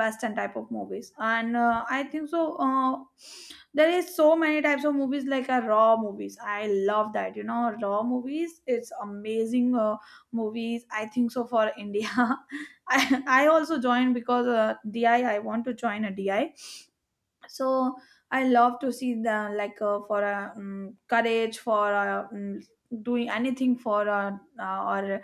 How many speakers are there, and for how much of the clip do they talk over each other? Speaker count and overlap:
one, no overlap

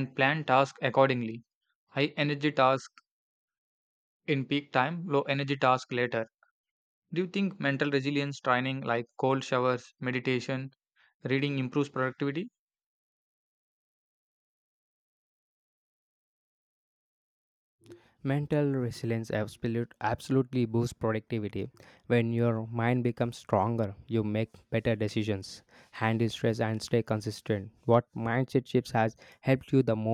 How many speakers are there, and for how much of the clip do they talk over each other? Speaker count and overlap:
two, no overlap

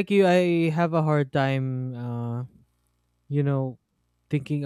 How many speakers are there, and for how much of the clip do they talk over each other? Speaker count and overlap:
one, no overlap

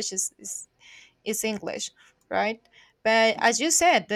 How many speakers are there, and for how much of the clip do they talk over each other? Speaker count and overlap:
one, no overlap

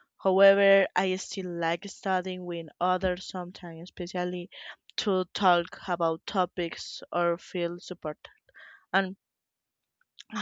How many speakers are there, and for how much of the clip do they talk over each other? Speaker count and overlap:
one, no overlap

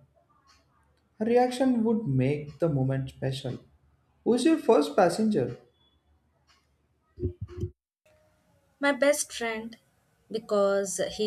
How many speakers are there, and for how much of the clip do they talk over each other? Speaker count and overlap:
two, no overlap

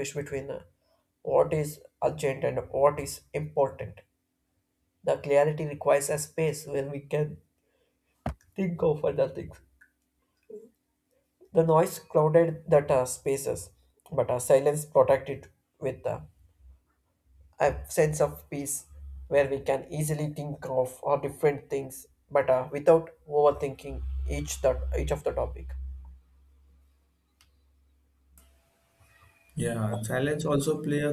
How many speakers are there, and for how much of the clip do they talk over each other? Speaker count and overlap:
two, no overlap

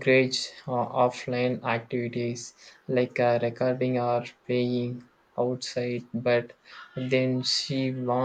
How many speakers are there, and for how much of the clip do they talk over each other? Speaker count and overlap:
one, no overlap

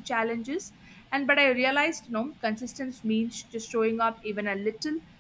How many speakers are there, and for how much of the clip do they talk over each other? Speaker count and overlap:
one, no overlap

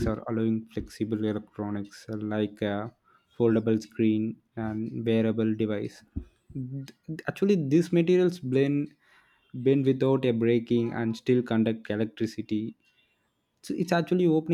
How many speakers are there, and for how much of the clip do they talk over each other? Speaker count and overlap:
one, no overlap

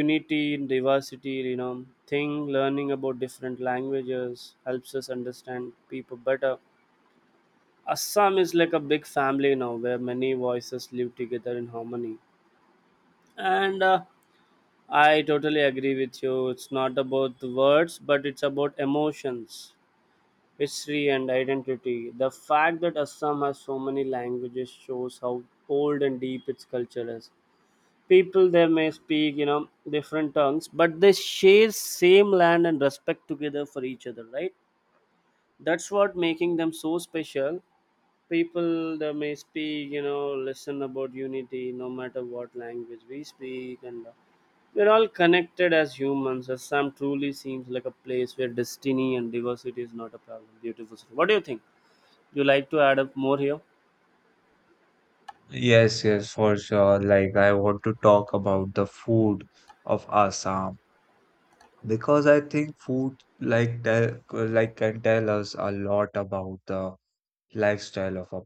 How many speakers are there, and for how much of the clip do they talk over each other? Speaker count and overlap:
two, no overlap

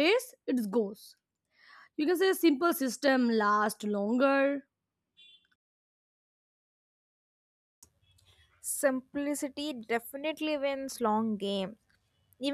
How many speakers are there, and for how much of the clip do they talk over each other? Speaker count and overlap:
two, no overlap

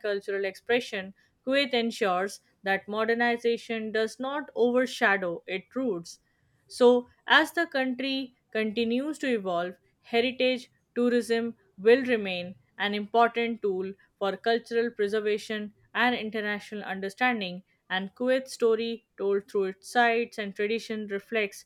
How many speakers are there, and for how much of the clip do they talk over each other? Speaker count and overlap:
one, no overlap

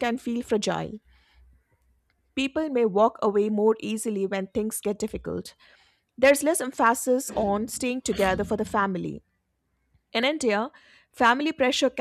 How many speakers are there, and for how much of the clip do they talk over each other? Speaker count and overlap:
one, no overlap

